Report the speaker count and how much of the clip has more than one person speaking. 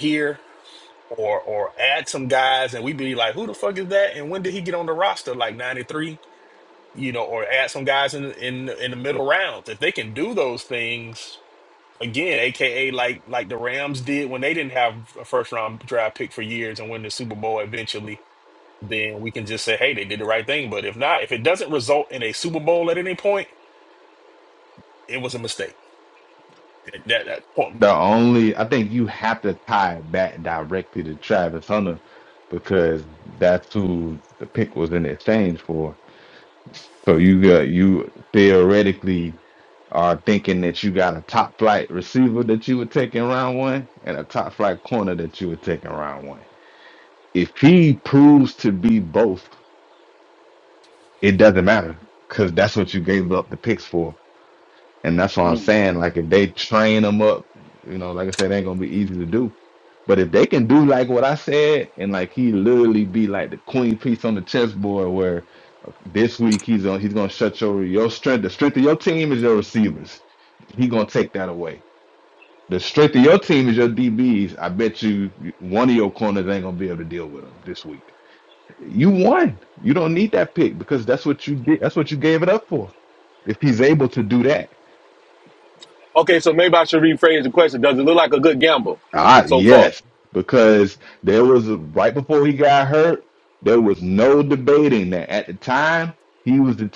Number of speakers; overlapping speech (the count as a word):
three, about 1%